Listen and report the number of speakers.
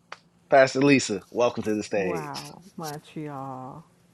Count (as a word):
two